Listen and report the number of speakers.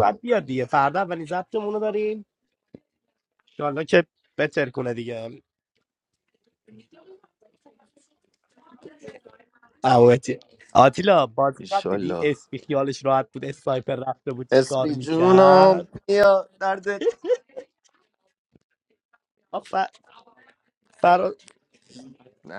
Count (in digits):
2